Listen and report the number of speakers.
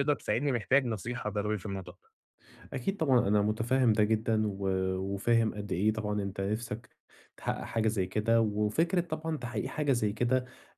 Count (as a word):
two